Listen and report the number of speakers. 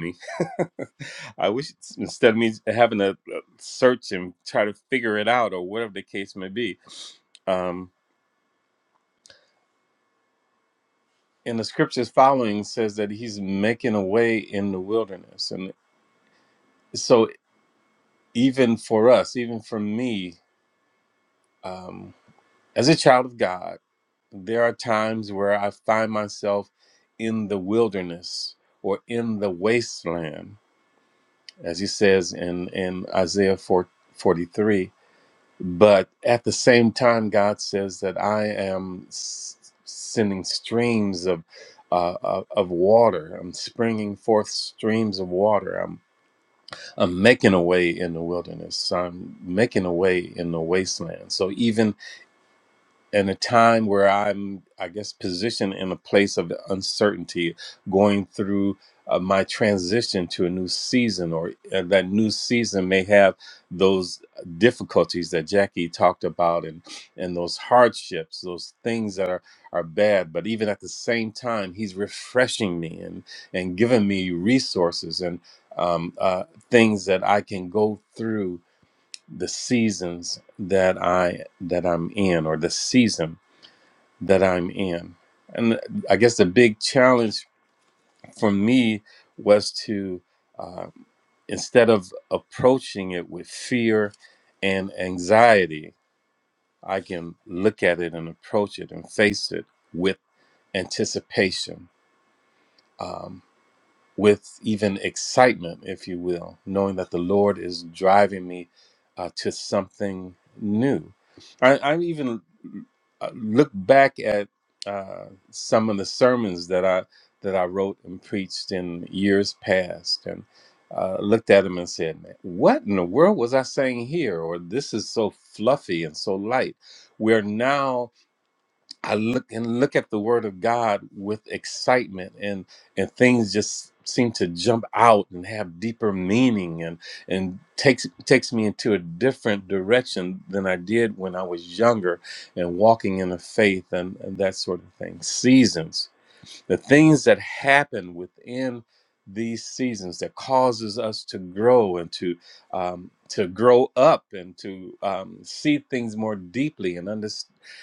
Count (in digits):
1